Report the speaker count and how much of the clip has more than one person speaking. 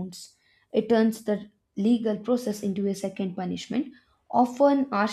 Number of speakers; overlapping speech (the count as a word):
one, no overlap